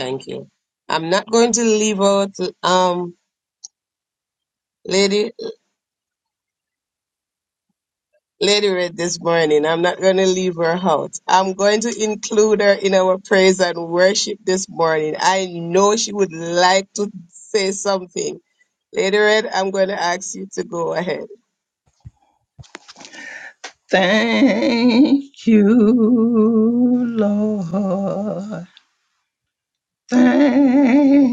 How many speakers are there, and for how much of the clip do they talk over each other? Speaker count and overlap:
2, no overlap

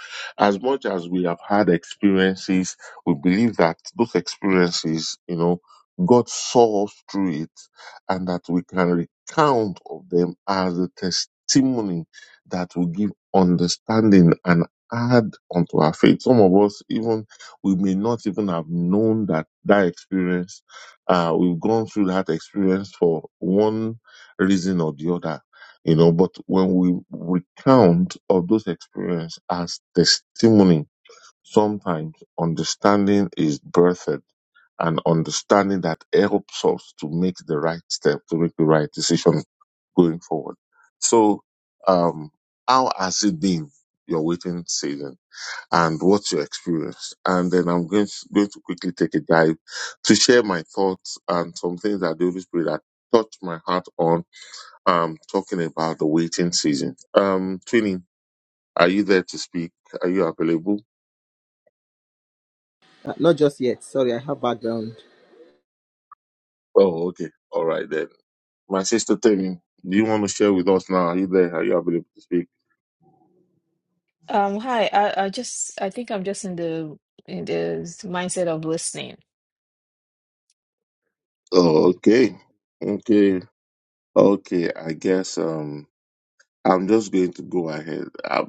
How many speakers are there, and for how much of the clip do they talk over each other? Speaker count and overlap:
3, no overlap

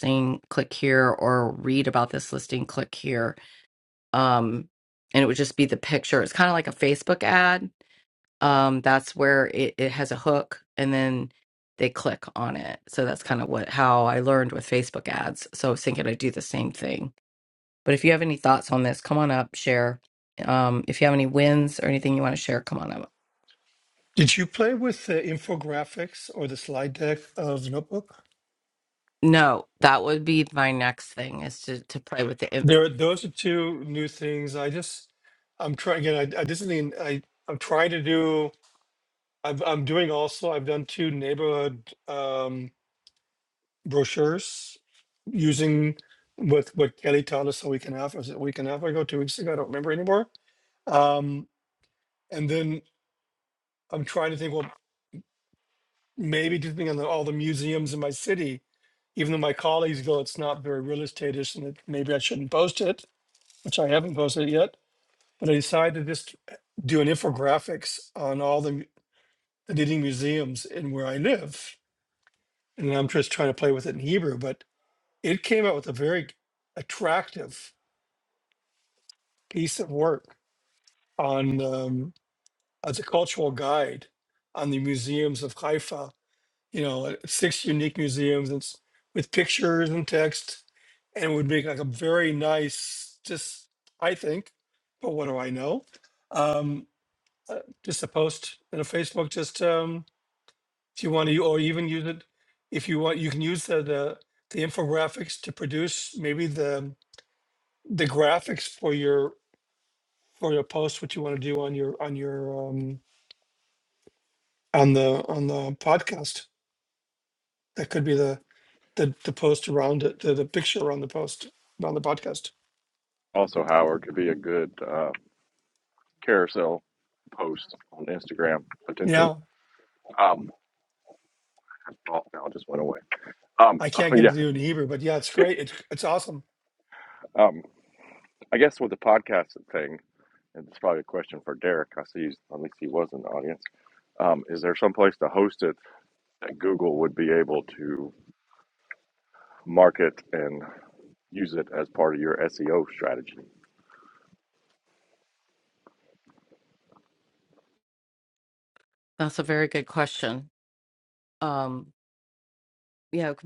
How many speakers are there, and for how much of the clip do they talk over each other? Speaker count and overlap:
3, about 1%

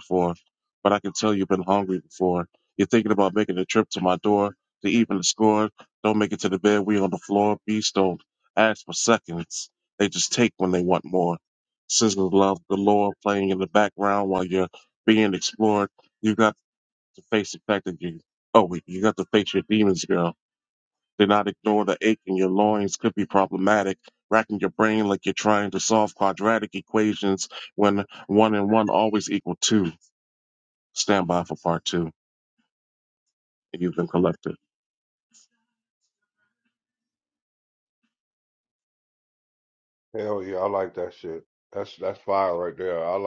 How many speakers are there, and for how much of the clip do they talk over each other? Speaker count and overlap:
2, no overlap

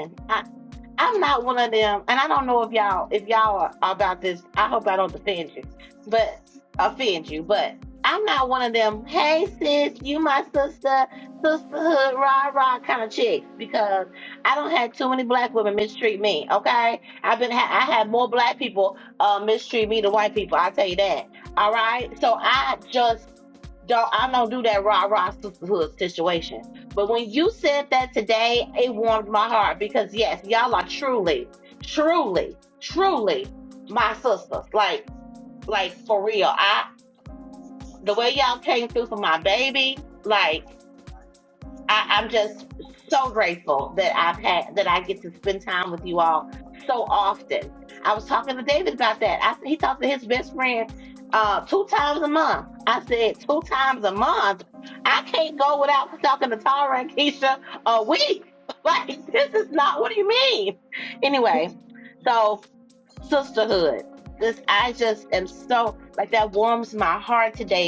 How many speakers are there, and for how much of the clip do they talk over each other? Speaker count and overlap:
1, no overlap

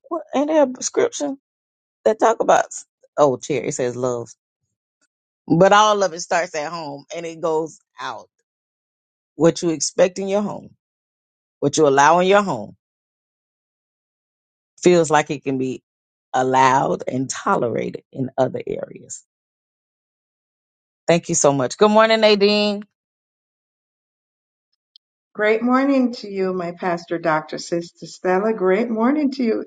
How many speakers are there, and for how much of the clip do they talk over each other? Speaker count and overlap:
2, no overlap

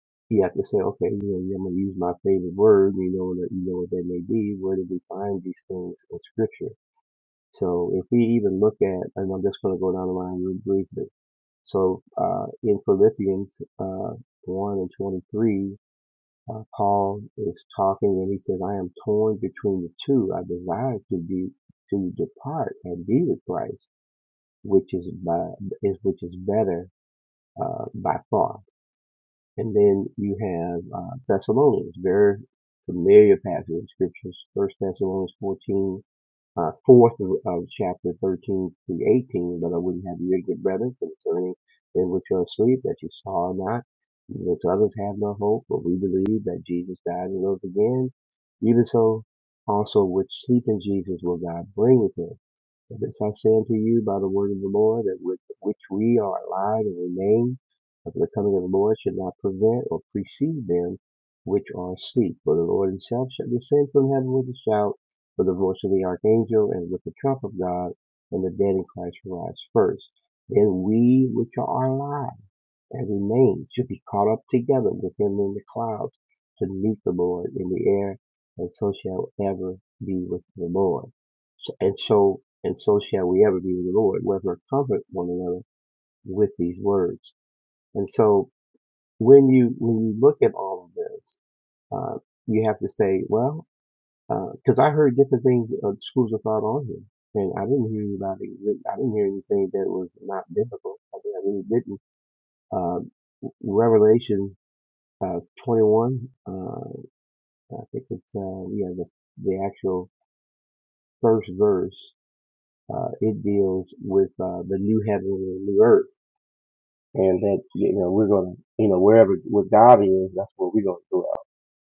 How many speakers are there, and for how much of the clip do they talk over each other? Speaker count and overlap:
1, no overlap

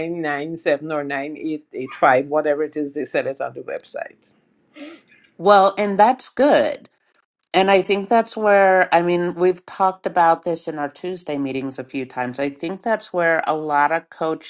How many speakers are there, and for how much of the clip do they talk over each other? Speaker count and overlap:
2, no overlap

